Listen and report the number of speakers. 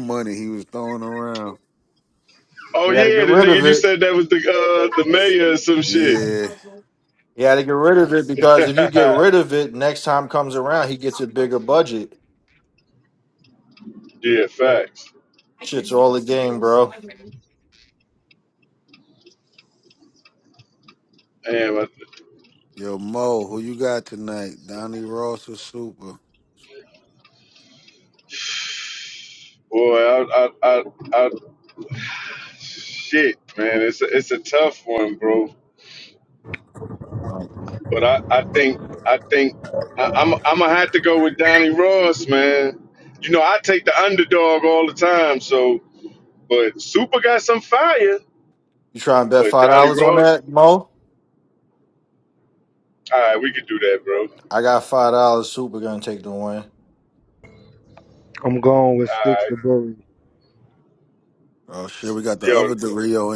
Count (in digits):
4